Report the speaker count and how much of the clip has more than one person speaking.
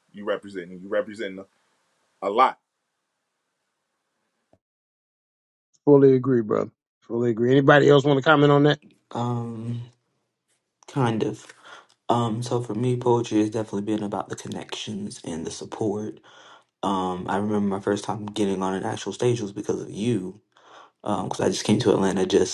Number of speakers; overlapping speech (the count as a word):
three, no overlap